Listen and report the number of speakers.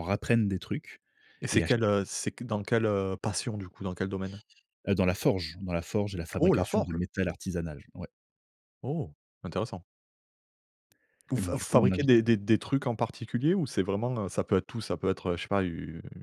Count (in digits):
2